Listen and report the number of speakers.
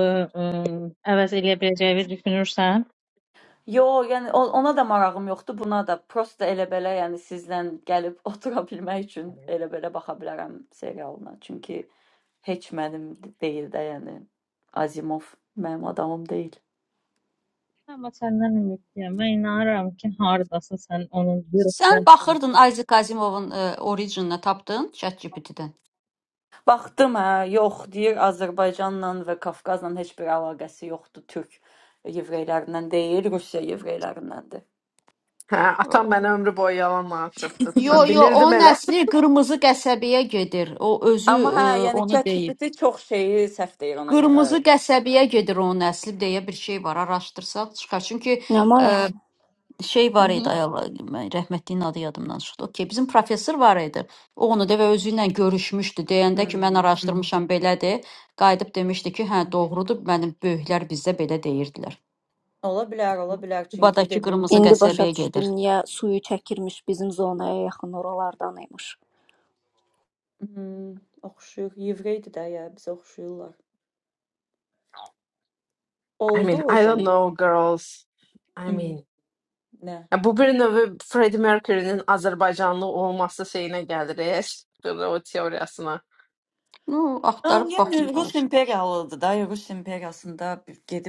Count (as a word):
five